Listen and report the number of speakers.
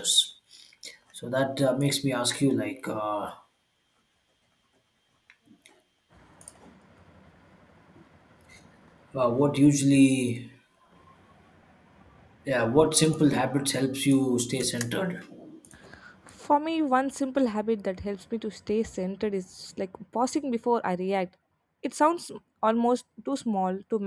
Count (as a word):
two